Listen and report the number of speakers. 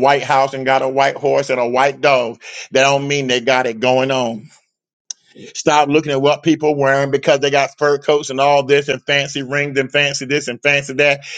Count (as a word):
one